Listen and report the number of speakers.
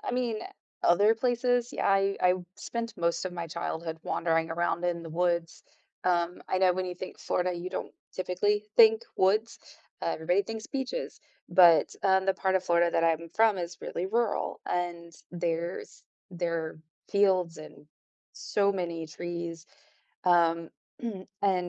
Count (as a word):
one